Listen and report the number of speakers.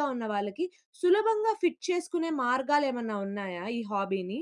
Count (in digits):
1